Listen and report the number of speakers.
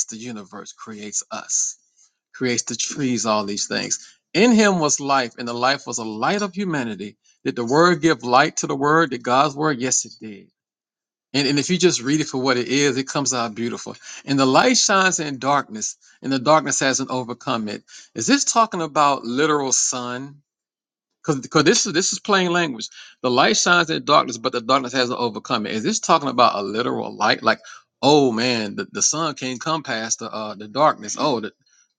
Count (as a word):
one